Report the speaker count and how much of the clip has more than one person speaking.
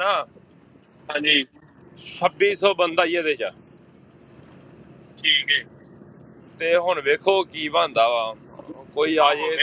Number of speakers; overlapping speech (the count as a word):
two, about 5%